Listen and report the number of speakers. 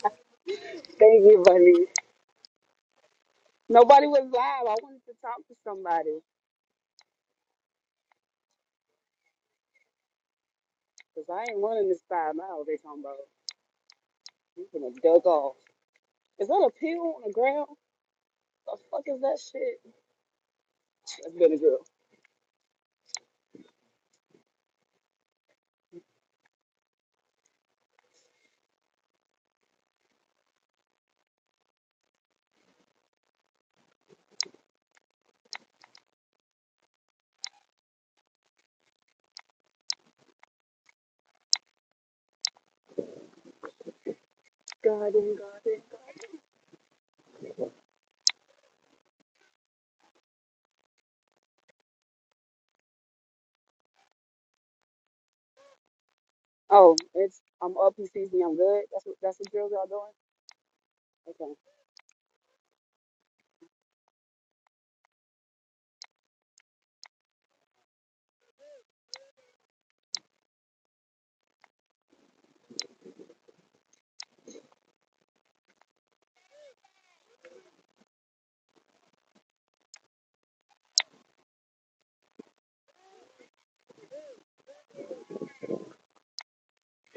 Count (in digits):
1